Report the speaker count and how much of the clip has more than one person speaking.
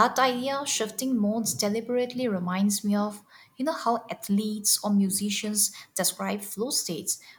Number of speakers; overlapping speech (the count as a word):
one, no overlap